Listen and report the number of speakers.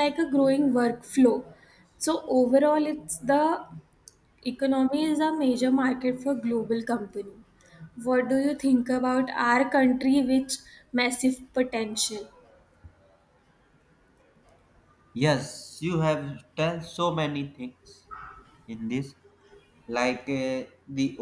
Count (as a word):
two